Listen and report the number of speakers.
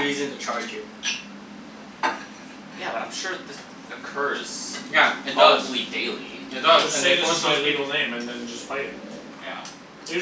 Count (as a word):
three